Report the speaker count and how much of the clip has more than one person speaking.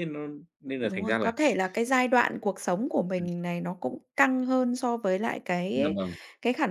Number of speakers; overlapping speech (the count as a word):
two, about 12%